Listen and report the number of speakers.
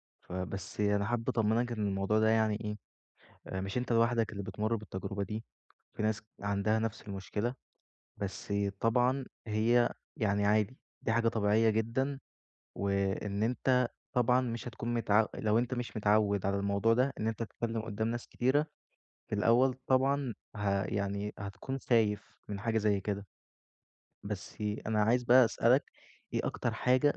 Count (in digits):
1